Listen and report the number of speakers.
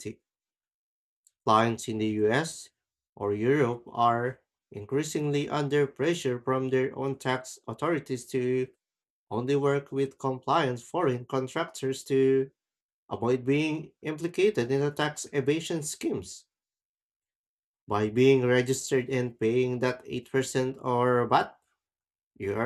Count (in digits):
1